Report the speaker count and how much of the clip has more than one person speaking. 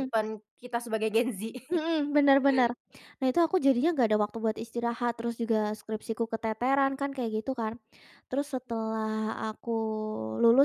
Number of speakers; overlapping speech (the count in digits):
2, about 1%